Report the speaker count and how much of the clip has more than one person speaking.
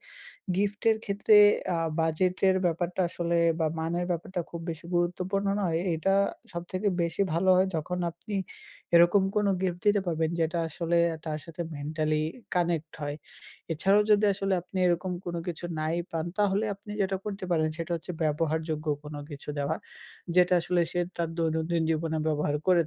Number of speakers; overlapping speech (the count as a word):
one, no overlap